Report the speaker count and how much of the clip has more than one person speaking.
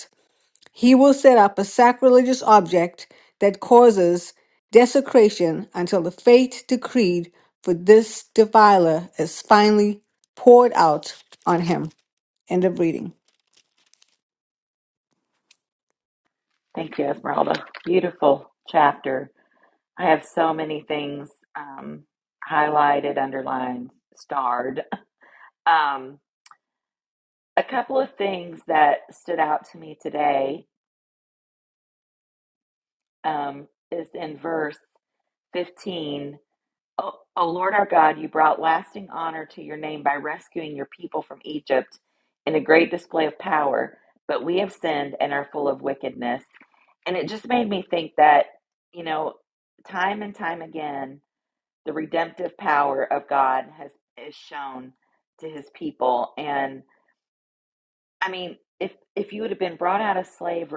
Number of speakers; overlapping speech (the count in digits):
2, no overlap